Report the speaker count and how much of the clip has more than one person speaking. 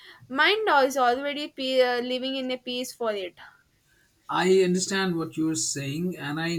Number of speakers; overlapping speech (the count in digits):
2, no overlap